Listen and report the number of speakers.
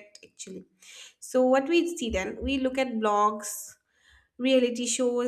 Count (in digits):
1